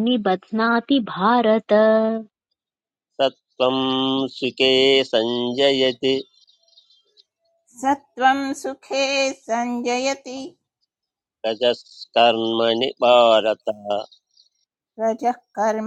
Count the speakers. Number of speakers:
three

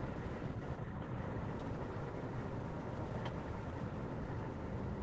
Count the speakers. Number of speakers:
zero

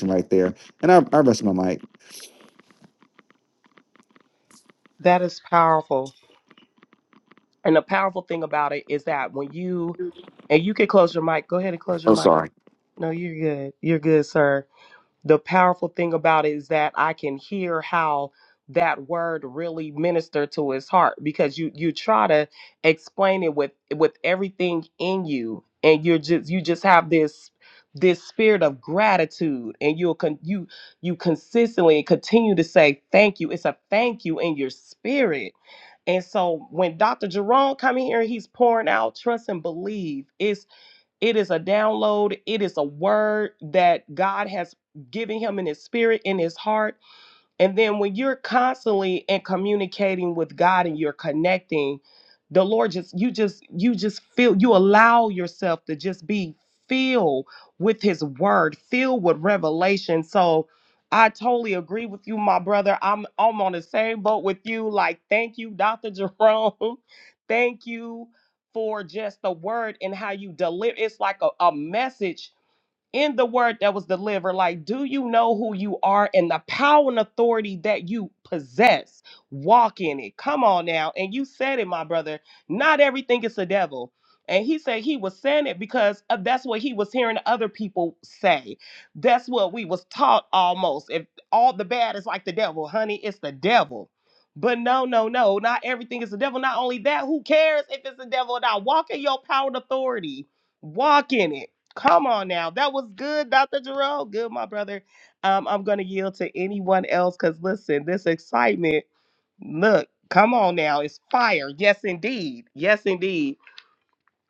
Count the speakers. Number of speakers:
two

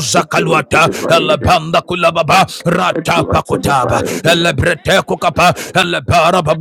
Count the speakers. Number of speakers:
two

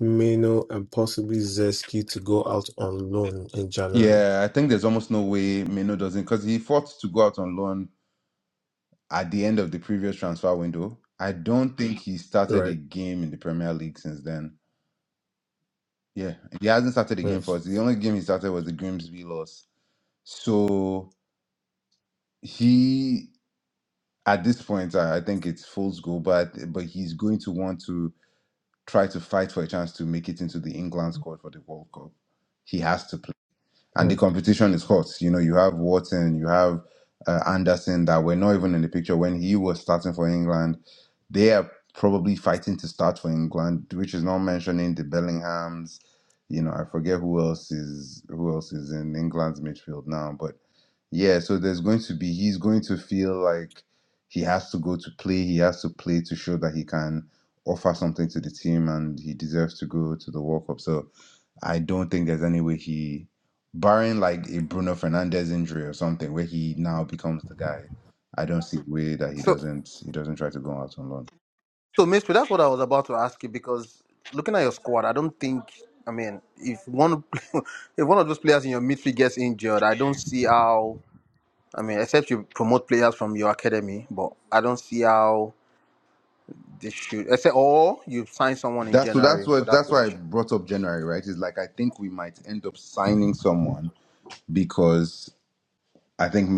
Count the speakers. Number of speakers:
three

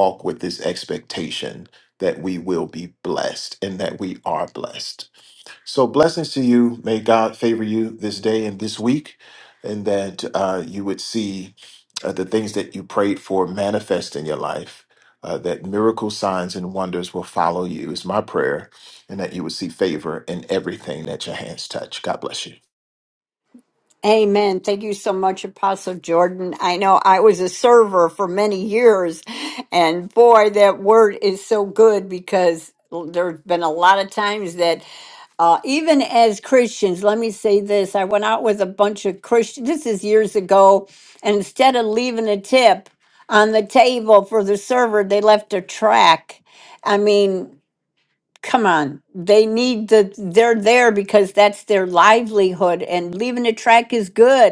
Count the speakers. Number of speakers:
two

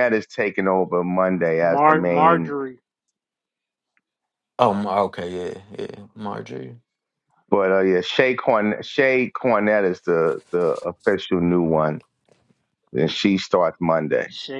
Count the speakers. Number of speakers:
three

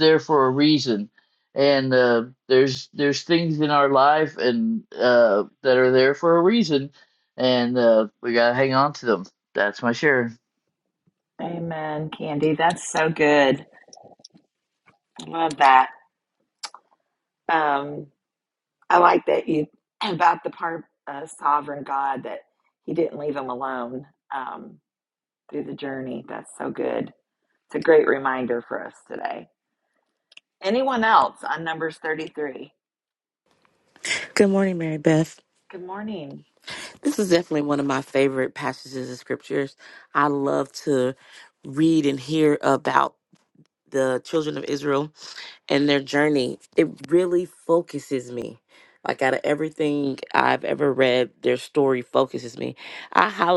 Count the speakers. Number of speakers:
three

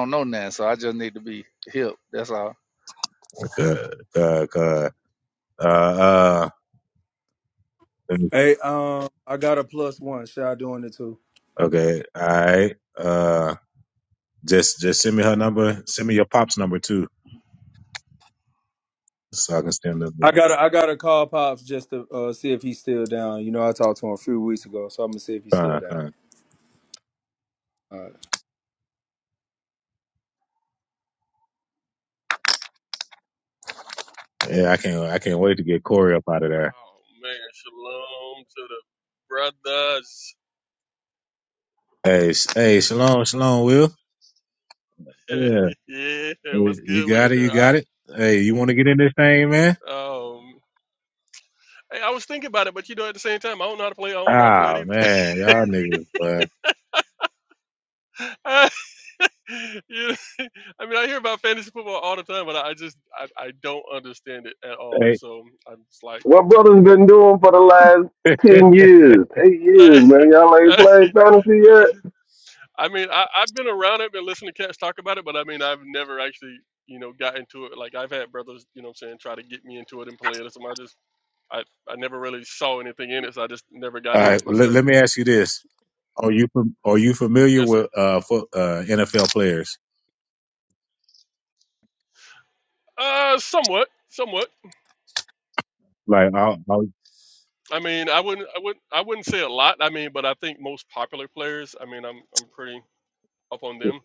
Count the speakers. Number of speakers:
five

